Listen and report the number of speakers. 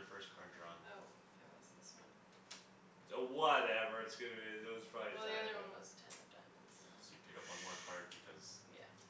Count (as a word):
three